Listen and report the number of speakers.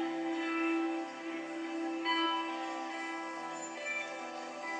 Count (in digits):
0